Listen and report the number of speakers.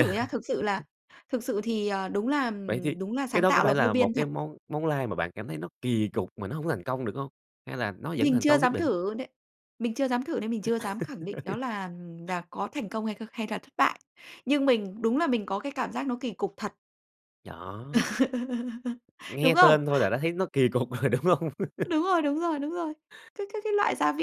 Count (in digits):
2